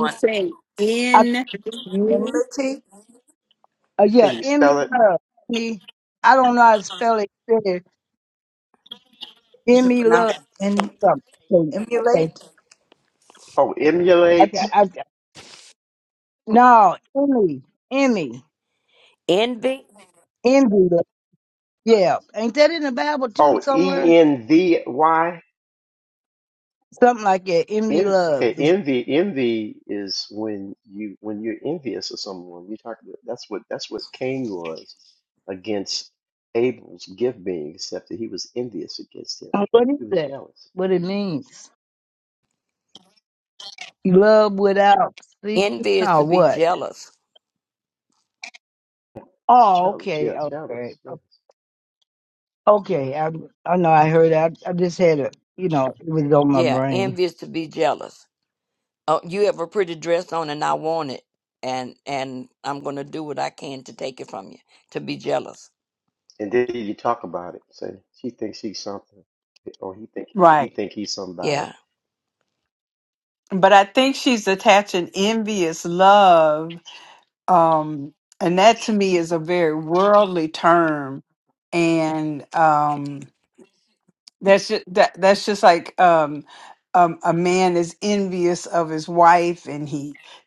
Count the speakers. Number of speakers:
five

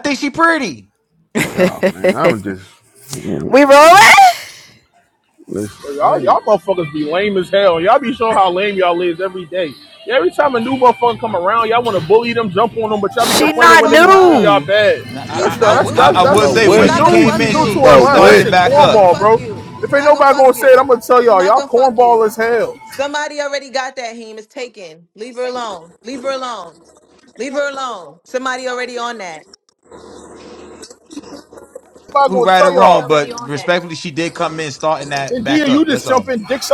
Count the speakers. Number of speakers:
five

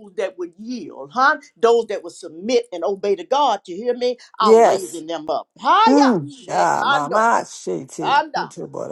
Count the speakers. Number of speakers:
two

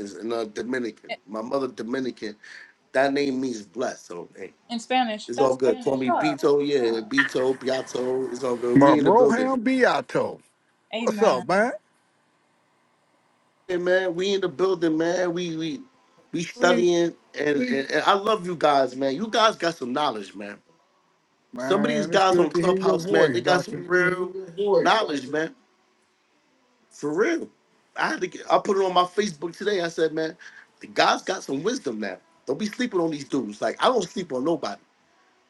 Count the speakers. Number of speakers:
three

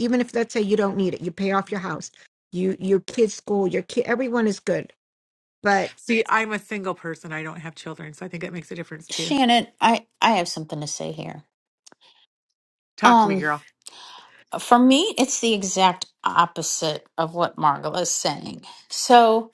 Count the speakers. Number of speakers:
three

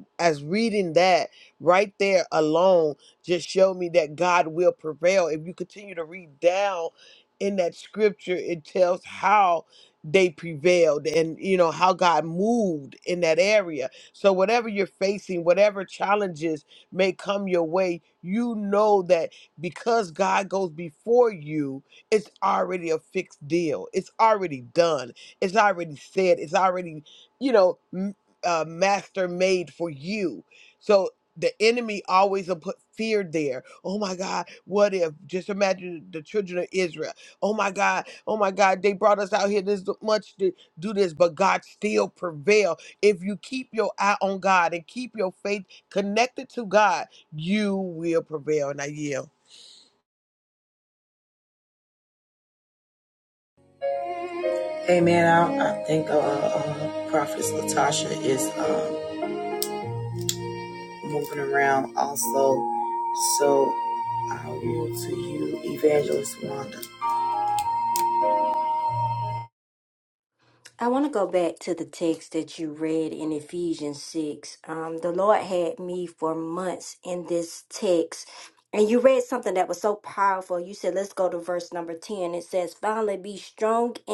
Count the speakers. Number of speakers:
three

